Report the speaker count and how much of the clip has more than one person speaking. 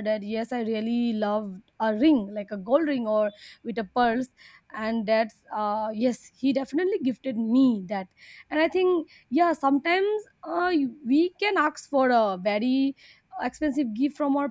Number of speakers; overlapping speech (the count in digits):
1, no overlap